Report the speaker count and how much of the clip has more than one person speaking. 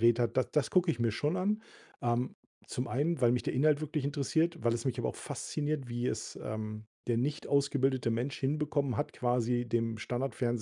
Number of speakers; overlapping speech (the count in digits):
1, no overlap